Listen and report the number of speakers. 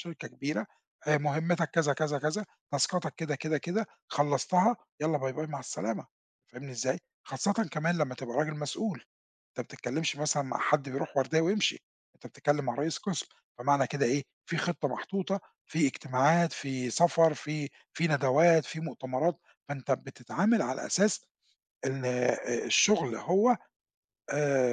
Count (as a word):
one